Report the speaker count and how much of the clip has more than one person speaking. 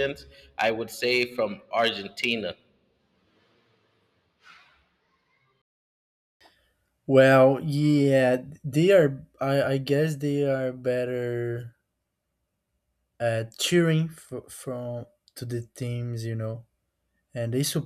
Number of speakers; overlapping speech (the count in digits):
2, no overlap